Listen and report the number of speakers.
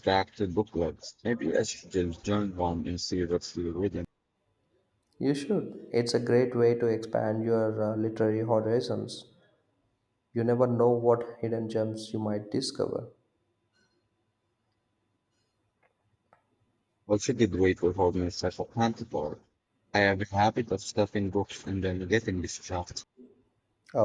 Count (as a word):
two